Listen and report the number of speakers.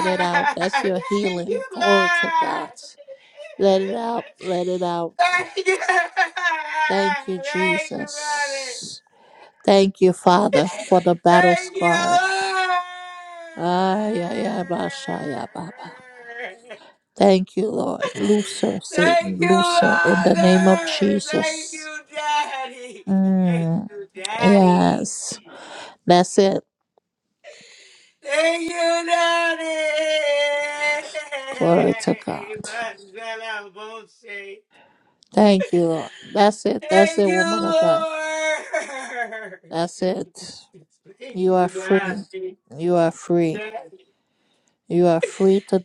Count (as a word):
two